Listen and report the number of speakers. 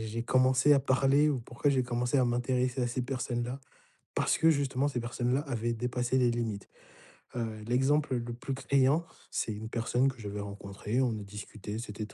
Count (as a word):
one